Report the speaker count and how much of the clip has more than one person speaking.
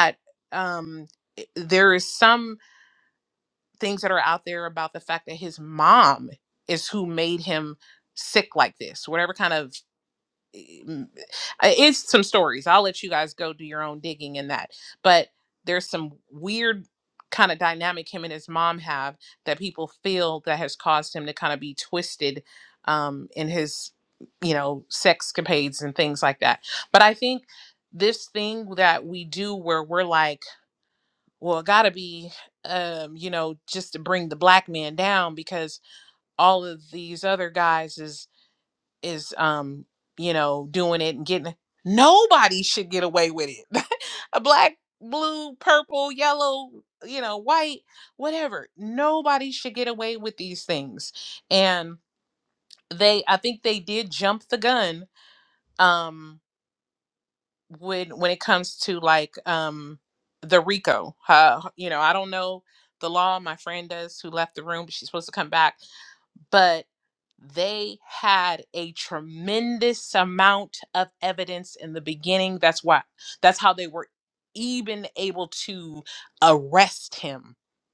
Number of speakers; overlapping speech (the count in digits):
1, no overlap